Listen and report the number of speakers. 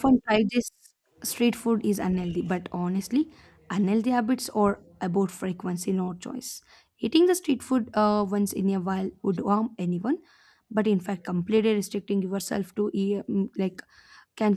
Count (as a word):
one